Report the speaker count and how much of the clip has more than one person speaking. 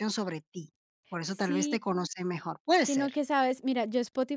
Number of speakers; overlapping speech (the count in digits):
2, about 13%